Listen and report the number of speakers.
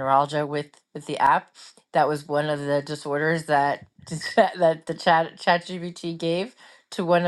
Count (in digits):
1